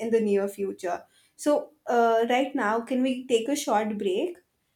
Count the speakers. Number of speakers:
one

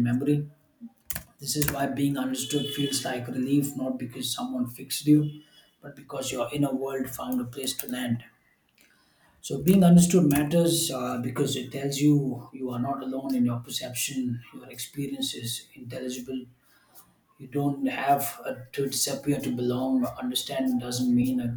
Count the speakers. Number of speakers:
one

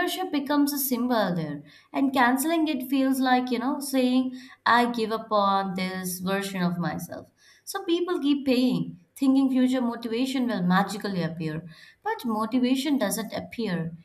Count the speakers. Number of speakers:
one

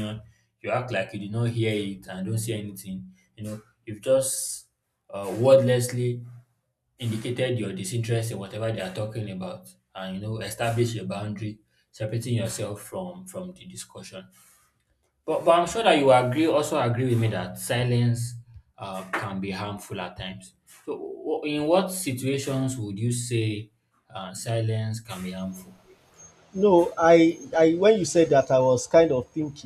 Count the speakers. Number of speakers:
two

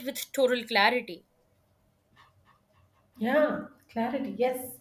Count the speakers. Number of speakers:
two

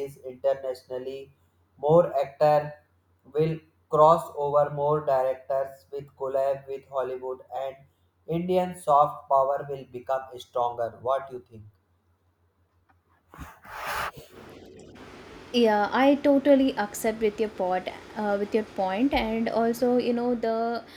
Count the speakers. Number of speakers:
two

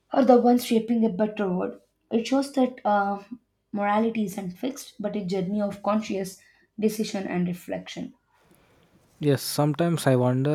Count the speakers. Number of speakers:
two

